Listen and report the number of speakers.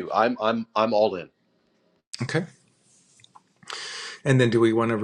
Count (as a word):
two